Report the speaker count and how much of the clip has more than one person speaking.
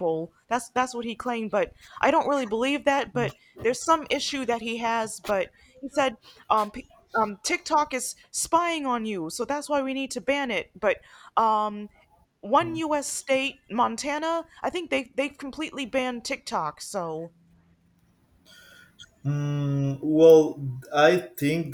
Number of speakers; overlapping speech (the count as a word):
two, under 1%